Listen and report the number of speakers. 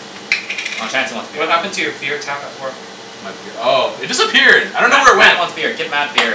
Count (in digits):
3